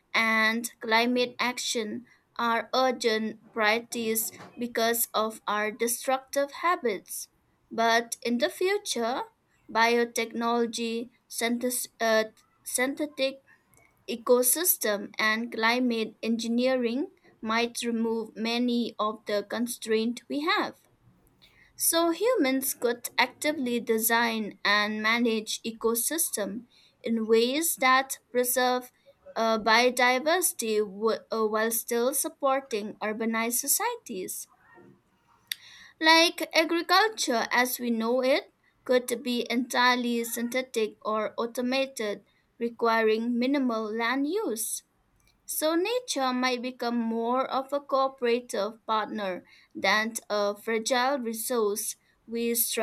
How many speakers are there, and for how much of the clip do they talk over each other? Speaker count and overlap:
one, no overlap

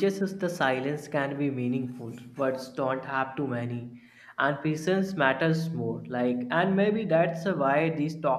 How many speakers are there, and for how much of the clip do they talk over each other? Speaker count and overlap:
one, no overlap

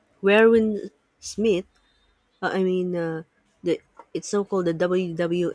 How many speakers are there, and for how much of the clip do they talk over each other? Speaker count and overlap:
one, no overlap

